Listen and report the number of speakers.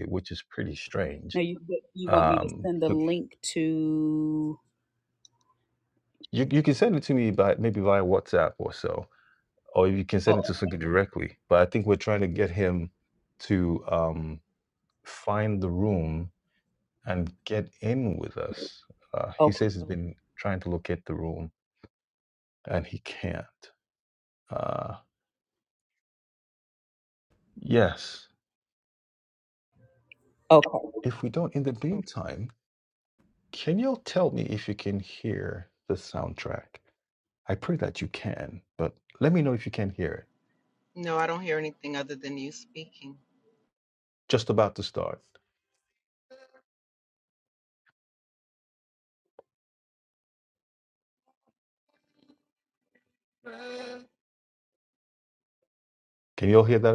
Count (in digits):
3